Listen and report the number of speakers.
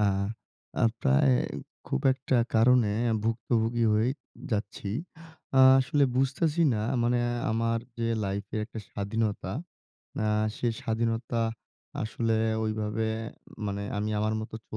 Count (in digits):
1